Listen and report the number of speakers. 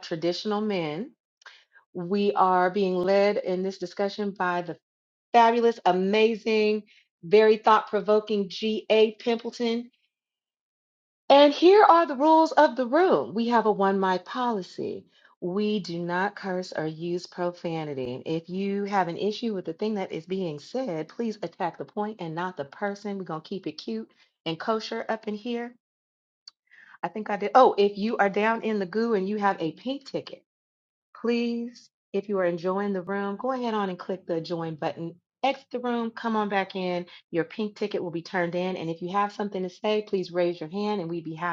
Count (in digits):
1